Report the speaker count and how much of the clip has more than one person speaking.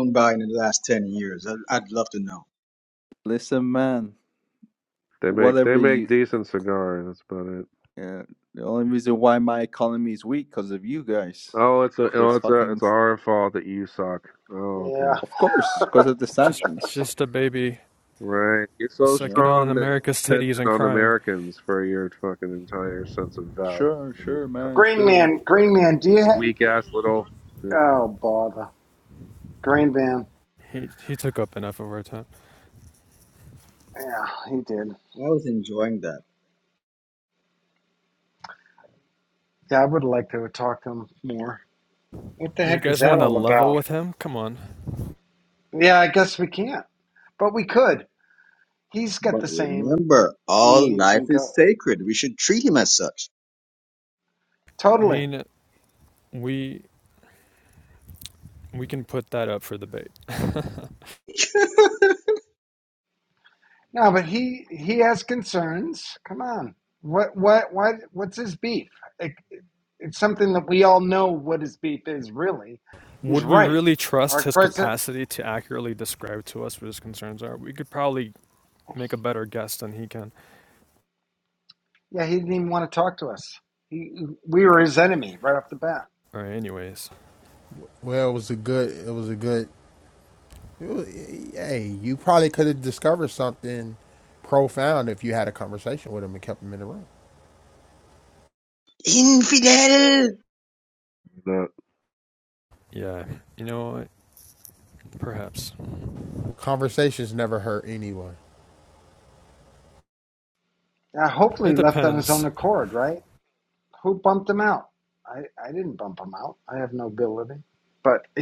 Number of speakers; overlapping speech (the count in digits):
6, about 9%